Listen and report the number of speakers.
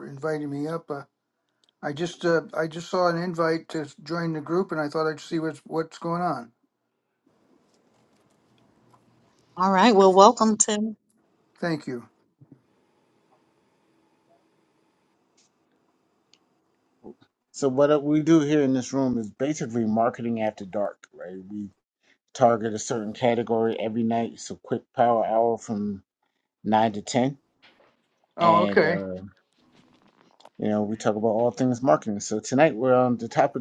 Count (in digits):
3